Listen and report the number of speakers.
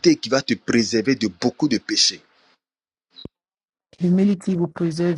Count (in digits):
2